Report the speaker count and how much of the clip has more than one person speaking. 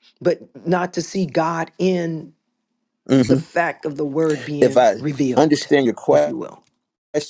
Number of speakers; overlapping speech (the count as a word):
two, about 13%